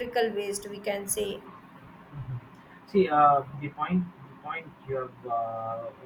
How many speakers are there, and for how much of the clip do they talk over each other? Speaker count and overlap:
2, no overlap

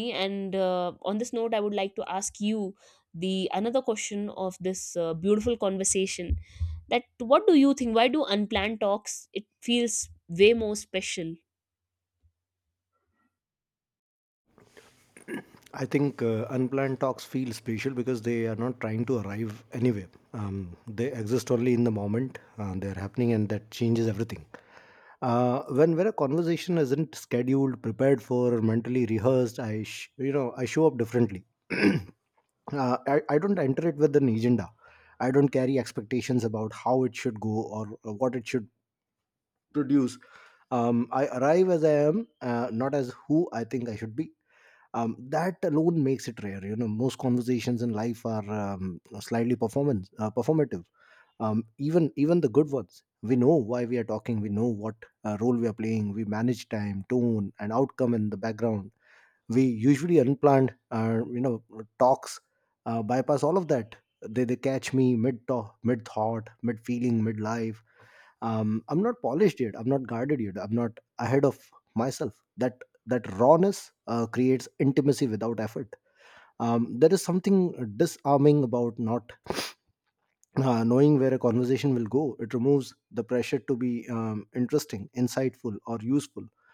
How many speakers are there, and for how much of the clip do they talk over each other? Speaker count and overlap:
2, no overlap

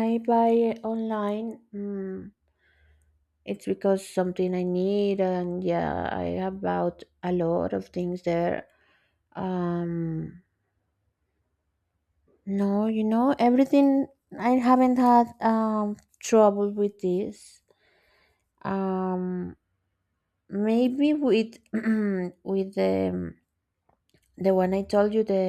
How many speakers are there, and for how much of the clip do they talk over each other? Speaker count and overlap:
1, no overlap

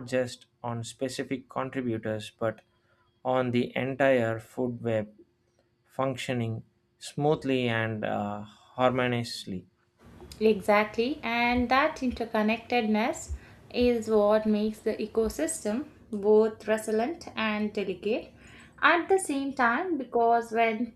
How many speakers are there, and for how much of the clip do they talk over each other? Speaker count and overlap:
2, no overlap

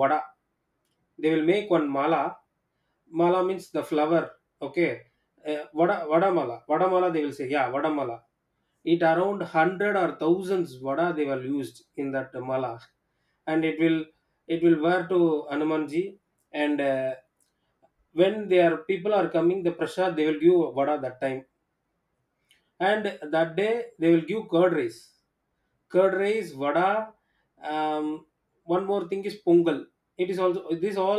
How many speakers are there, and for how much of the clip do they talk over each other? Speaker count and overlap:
1, no overlap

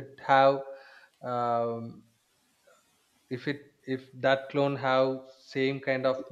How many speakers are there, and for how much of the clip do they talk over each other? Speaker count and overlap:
1, no overlap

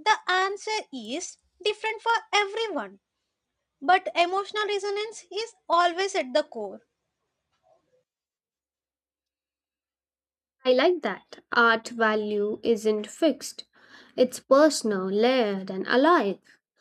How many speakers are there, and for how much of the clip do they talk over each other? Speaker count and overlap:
2, no overlap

